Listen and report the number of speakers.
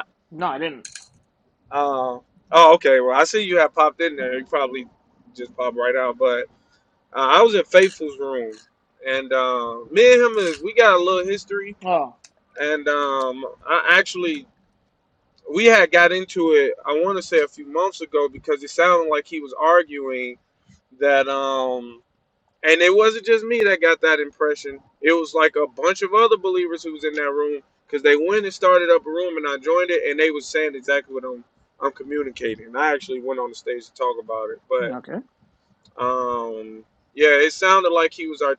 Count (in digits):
2